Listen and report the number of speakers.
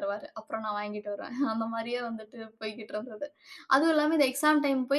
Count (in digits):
1